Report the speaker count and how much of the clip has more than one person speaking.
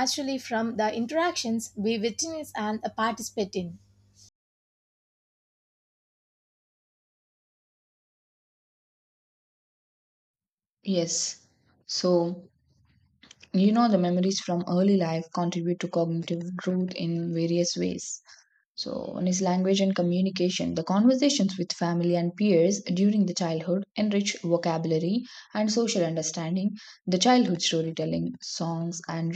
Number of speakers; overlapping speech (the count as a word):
two, no overlap